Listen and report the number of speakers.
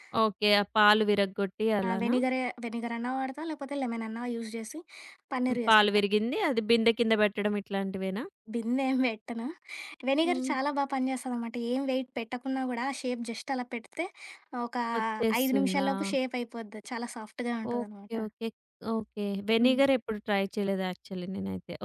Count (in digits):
2